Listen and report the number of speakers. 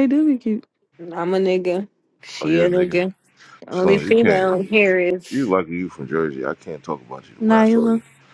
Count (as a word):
three